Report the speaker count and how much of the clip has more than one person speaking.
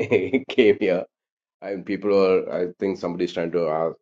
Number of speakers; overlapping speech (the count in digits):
1, no overlap